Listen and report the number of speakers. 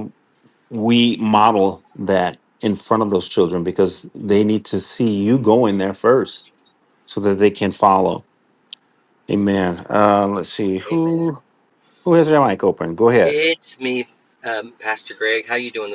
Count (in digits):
2